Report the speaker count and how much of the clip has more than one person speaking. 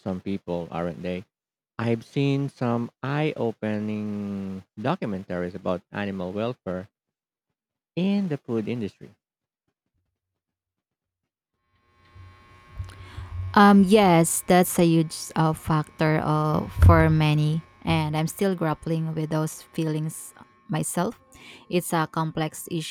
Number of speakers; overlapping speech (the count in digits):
2, no overlap